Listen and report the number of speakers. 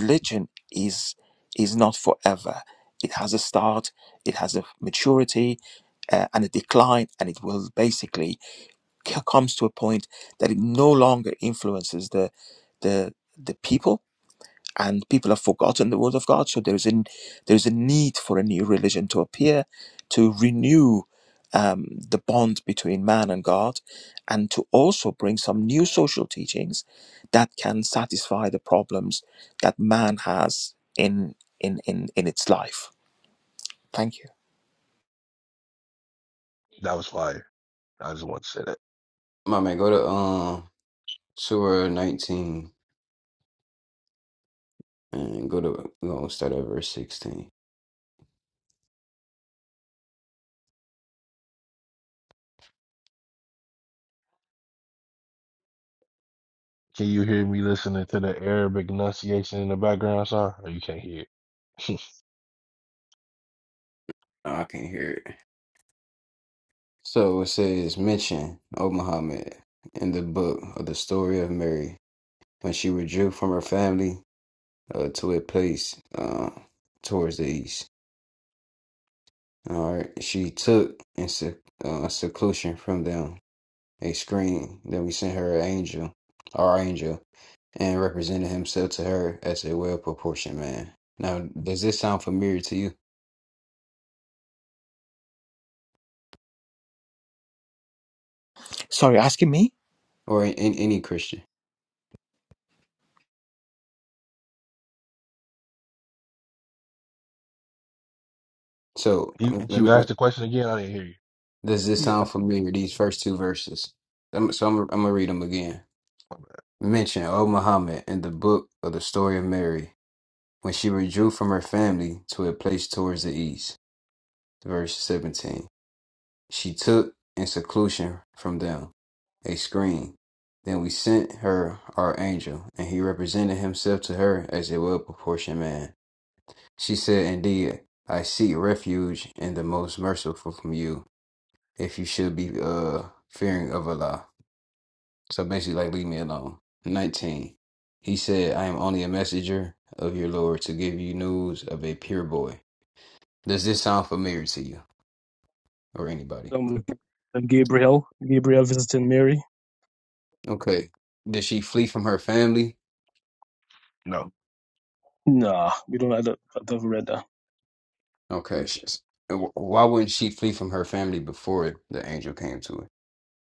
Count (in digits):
4